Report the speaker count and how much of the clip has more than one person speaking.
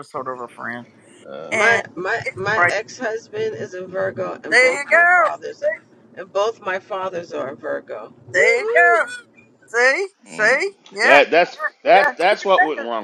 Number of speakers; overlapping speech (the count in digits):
3, about 24%